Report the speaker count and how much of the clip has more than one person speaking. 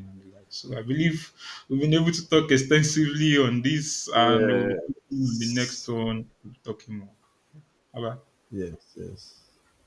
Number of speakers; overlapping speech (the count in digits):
2, about 9%